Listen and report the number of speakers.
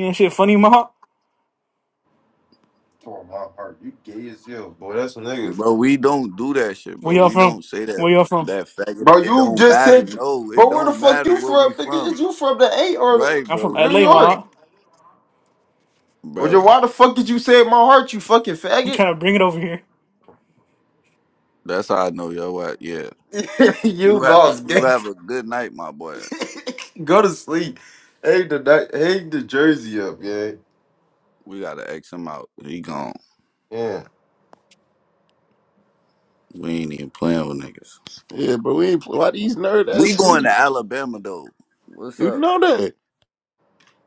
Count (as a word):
four